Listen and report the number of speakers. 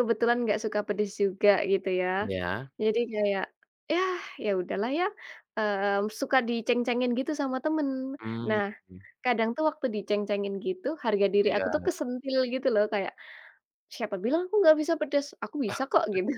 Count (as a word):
two